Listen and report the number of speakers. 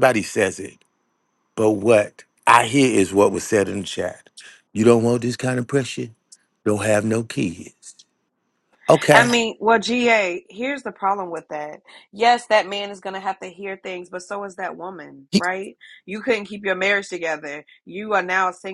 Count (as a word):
two